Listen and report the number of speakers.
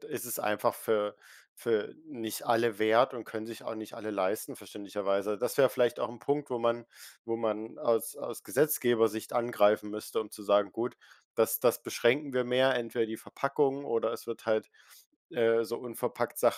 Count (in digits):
1